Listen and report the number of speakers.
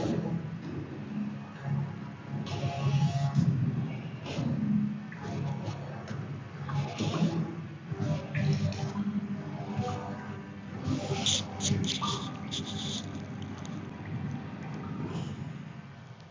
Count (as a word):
zero